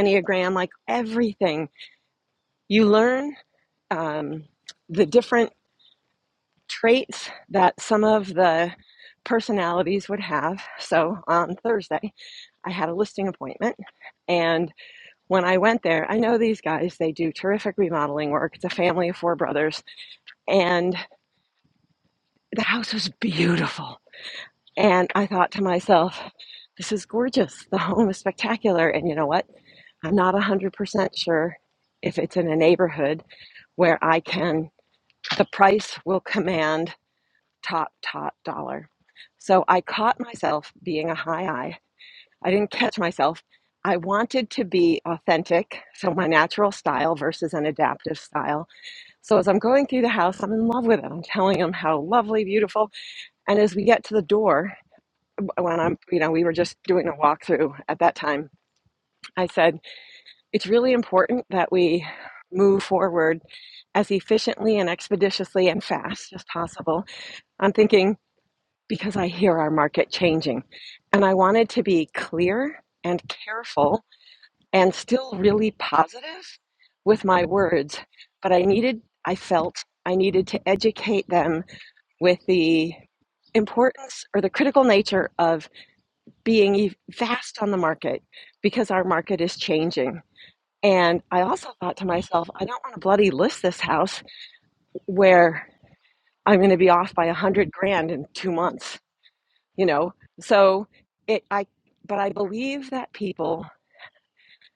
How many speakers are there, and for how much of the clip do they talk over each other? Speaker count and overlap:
one, no overlap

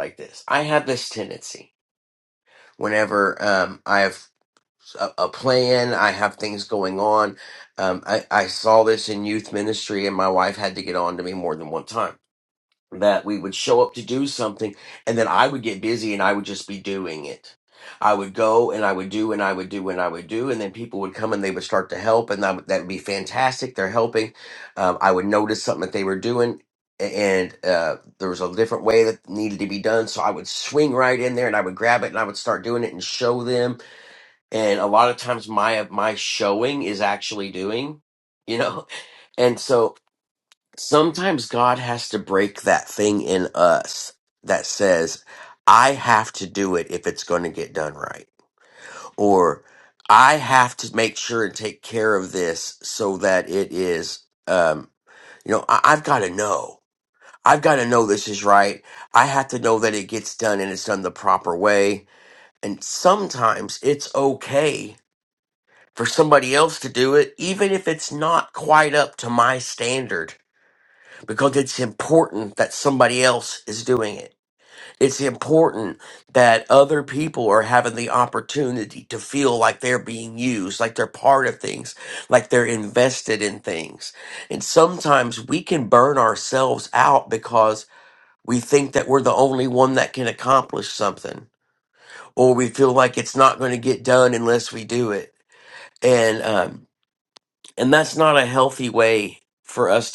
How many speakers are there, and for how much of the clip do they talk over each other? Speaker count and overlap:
one, no overlap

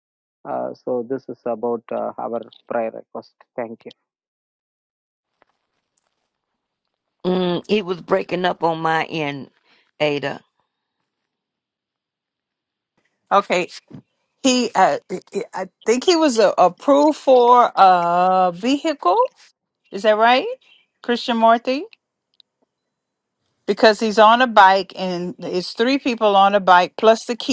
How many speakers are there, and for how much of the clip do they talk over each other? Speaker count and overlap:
three, no overlap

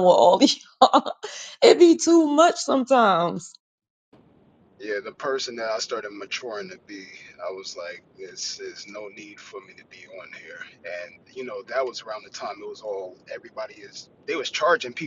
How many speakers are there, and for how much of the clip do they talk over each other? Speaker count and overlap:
two, no overlap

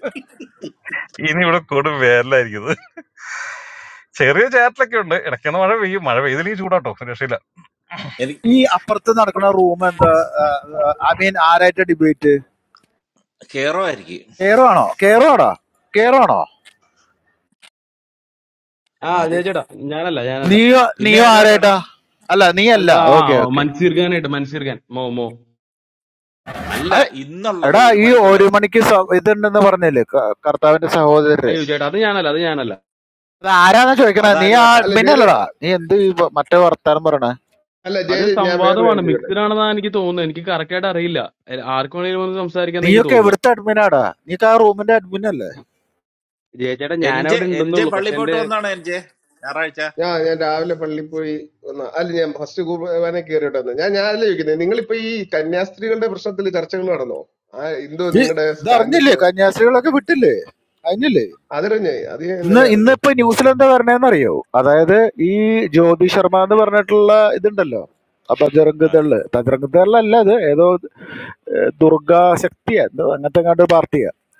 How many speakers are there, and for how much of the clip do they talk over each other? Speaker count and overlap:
five, about 12%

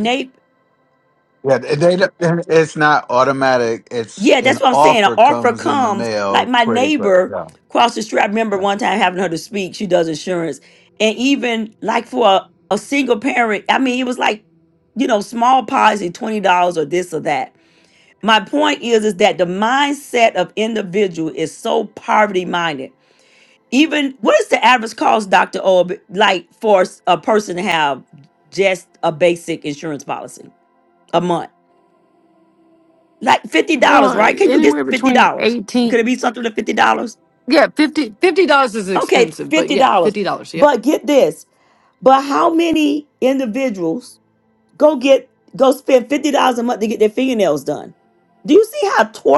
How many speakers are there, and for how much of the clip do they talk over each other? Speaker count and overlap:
three, about 13%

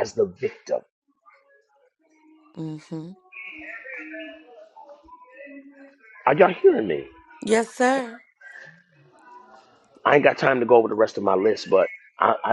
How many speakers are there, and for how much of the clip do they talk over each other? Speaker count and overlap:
two, no overlap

